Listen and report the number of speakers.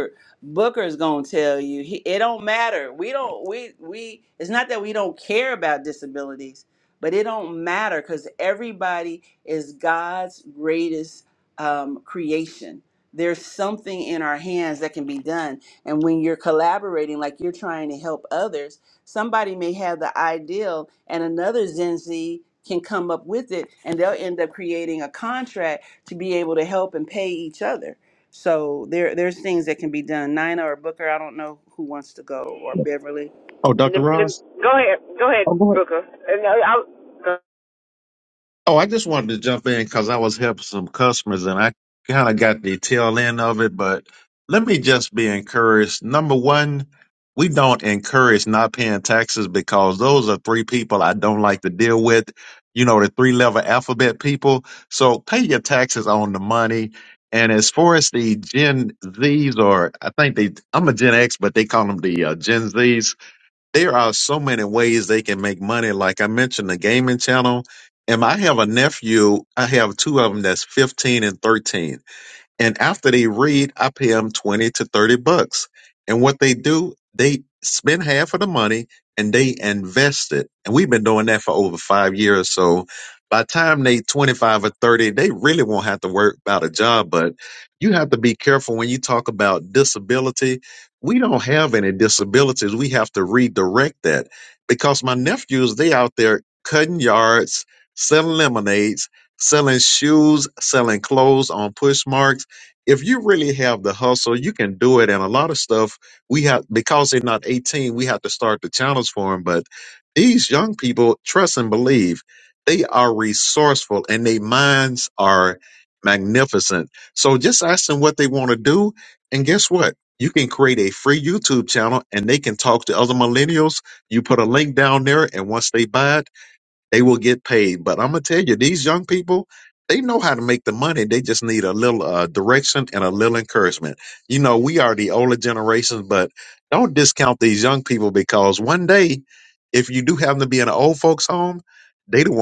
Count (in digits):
3